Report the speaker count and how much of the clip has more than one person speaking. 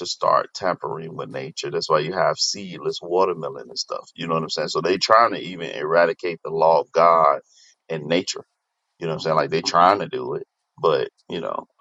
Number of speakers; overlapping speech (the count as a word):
one, no overlap